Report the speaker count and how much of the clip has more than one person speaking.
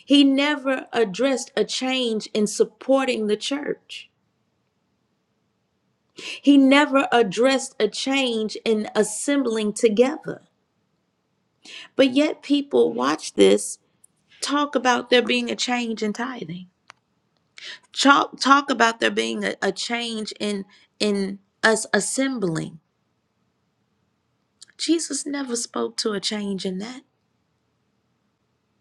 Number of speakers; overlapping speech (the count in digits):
1, no overlap